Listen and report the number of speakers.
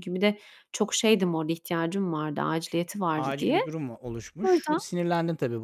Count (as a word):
two